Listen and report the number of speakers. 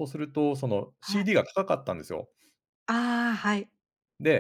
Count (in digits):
2